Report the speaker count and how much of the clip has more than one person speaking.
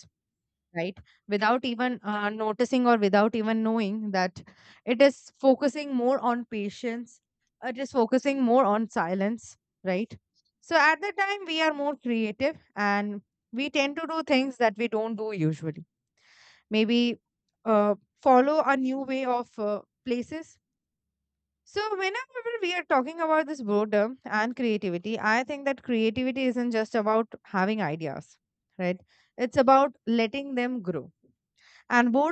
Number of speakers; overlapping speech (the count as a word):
one, no overlap